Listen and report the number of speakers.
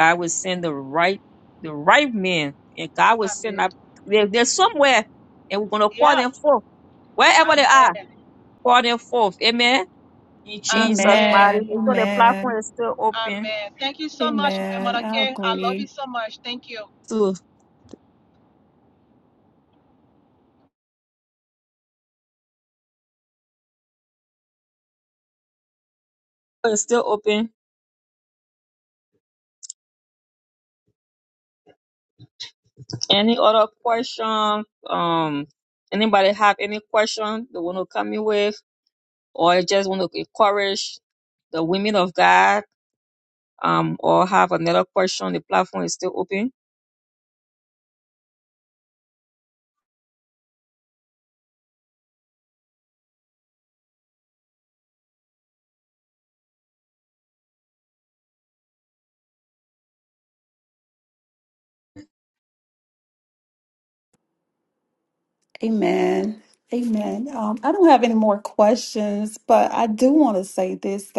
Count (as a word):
three